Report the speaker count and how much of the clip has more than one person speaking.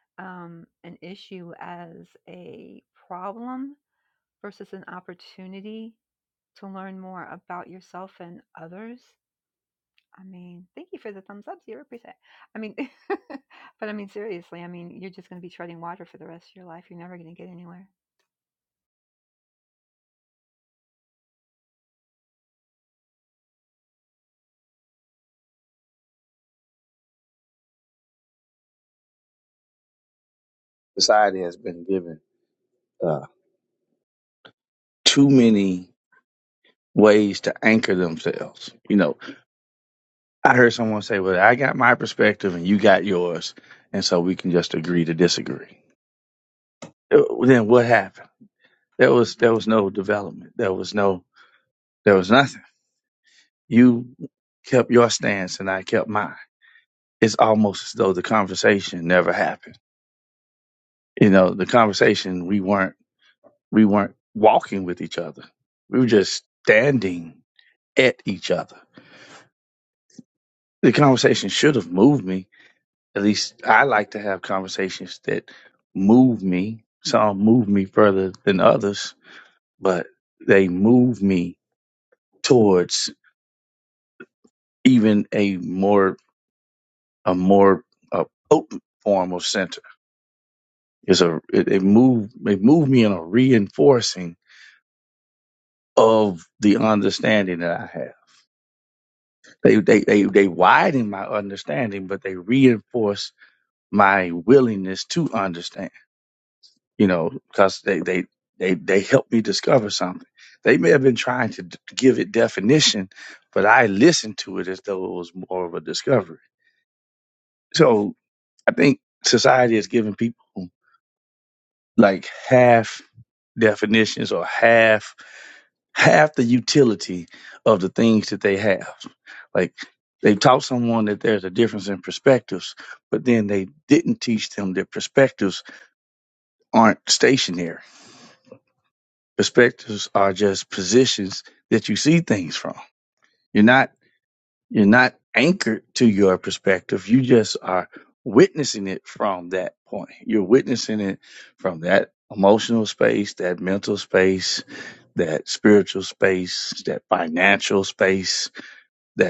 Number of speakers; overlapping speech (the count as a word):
two, no overlap